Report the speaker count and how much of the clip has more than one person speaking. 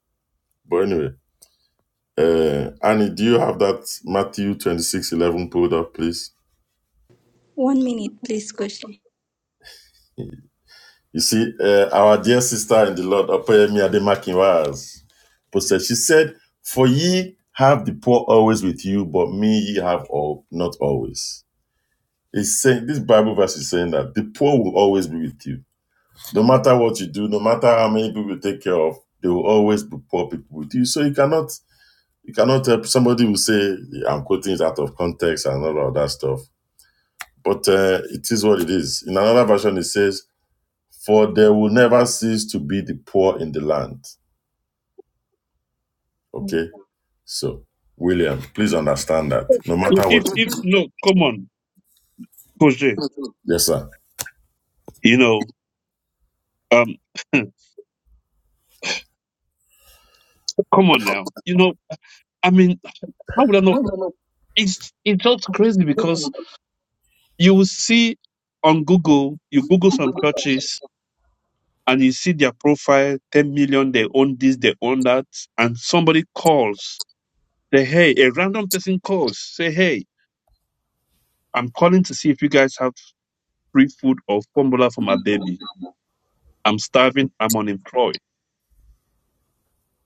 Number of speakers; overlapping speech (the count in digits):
3, about 1%